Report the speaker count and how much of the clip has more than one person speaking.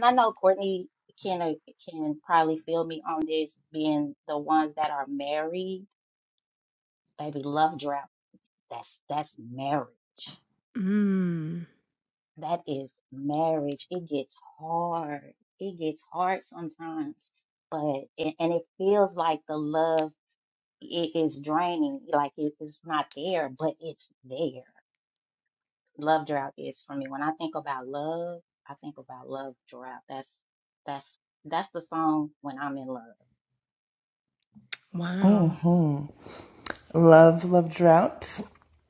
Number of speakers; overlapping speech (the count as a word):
three, about 1%